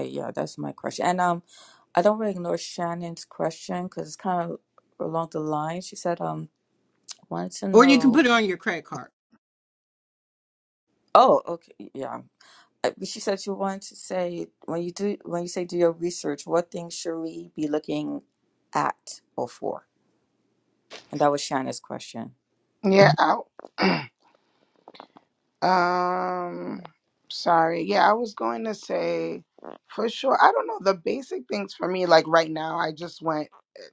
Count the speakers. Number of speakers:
three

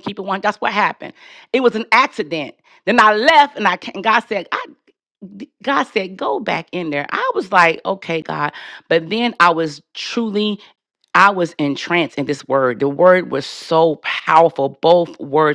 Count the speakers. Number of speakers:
one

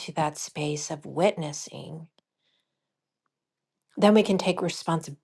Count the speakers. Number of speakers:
one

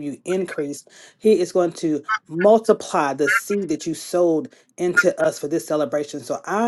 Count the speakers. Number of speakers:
one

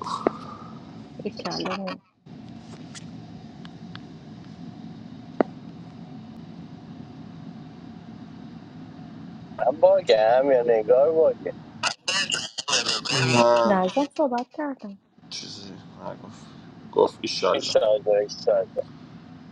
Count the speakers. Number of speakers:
three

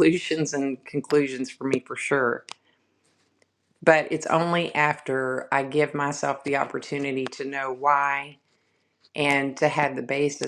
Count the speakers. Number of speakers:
one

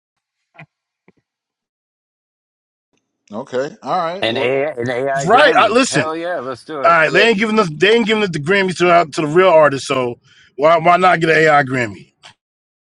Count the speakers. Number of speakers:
three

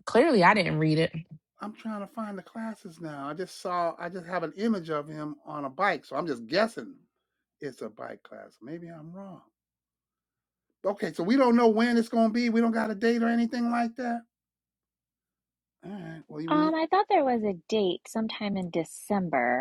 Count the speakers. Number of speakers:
three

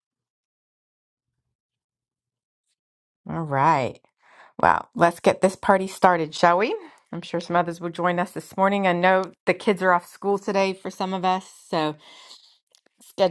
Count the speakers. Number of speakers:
one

